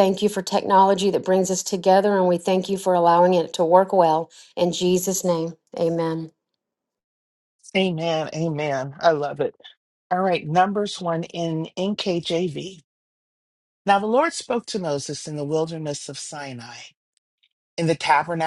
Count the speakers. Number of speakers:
two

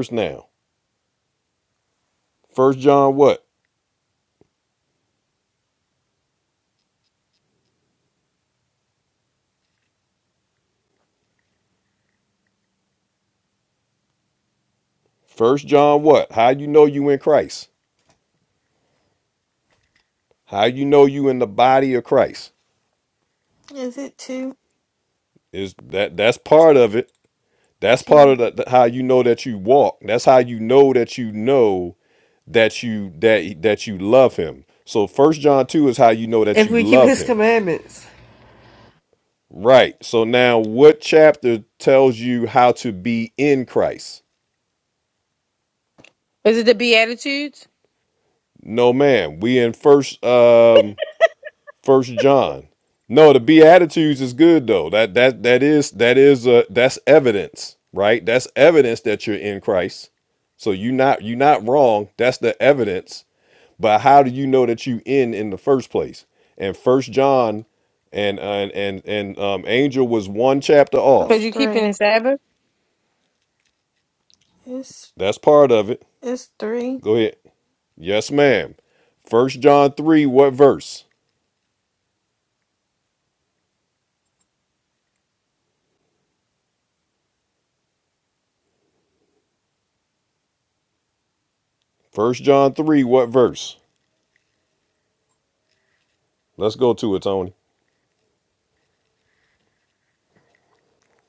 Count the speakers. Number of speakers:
four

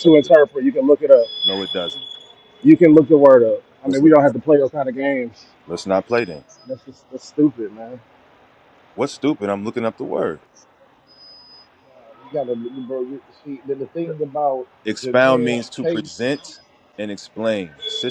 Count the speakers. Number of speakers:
three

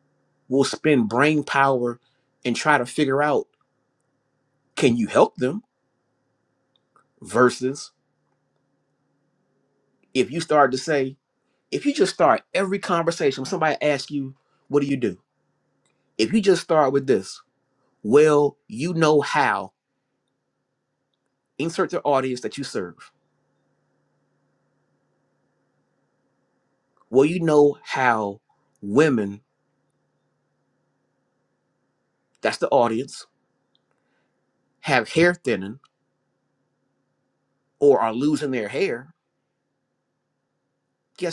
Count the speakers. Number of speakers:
one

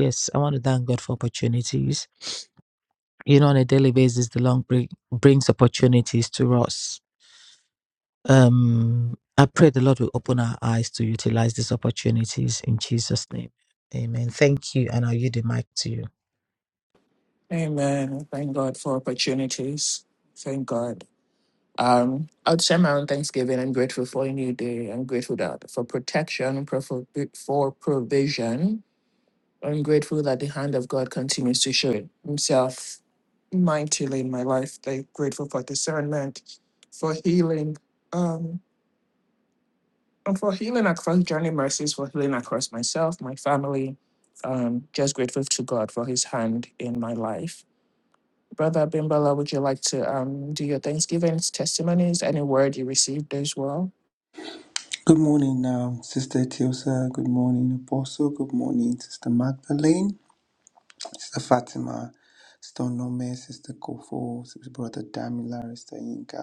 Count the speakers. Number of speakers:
three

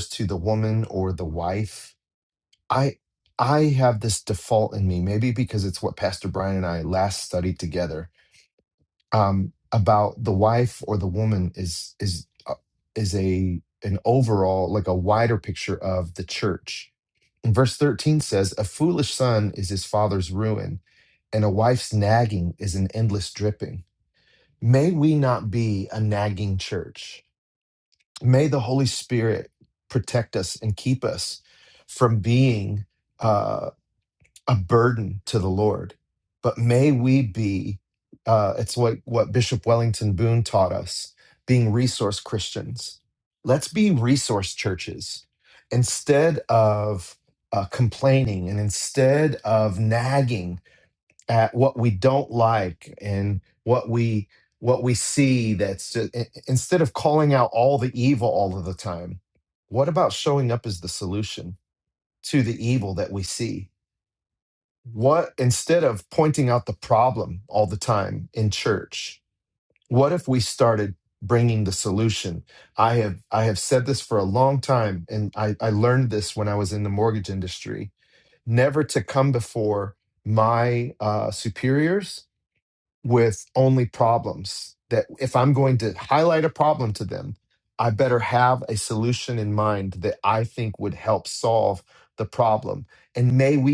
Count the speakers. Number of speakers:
one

